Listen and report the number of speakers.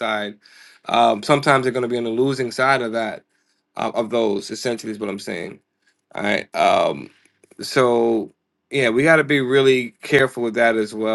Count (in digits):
1